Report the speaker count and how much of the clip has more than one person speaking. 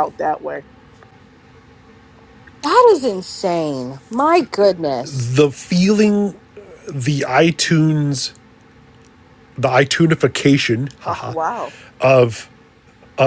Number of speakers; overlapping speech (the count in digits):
3, about 2%